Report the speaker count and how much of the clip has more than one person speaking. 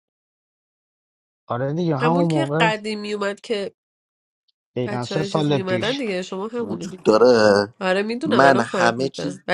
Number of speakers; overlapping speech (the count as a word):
three, about 39%